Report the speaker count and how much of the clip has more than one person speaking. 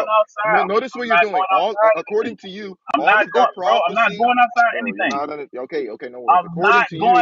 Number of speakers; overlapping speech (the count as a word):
two, about 67%